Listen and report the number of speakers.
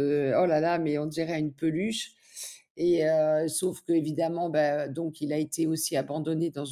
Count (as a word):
one